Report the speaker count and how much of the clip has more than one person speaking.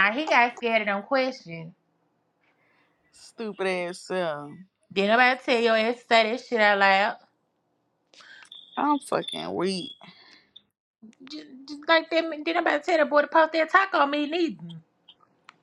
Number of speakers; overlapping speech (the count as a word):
two, no overlap